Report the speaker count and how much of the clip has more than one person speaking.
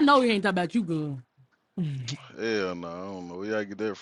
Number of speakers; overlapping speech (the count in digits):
2, no overlap